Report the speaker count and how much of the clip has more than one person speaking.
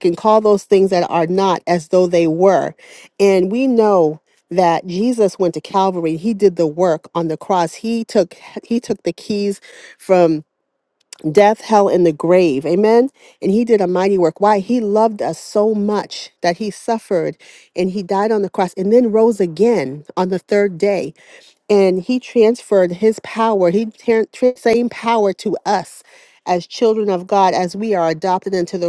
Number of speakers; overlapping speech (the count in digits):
1, no overlap